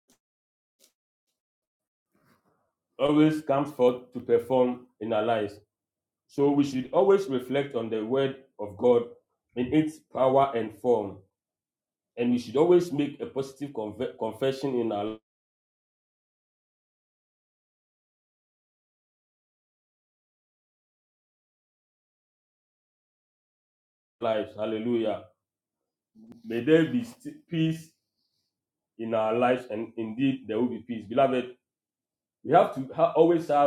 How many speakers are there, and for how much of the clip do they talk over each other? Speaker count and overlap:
one, no overlap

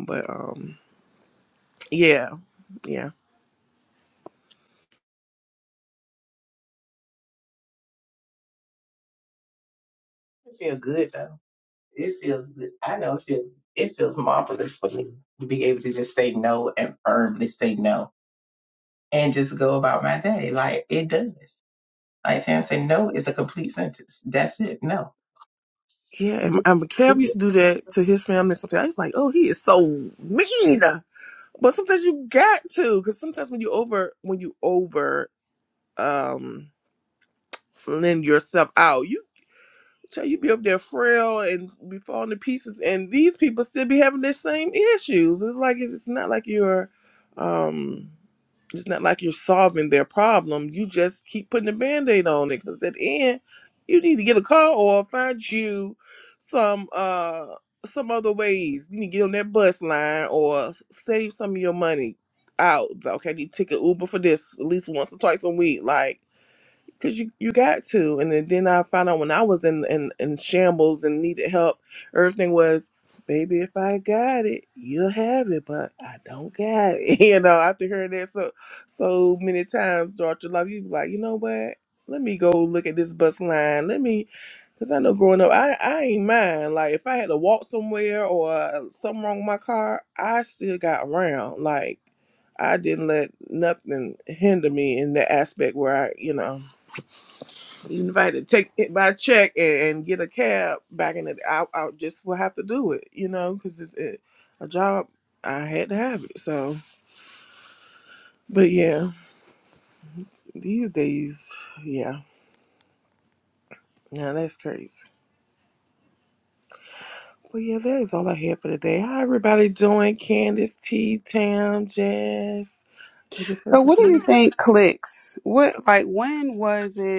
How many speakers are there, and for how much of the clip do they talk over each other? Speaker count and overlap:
three, about 1%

